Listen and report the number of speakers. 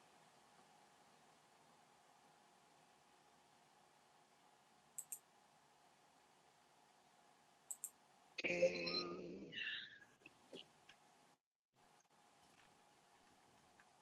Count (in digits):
0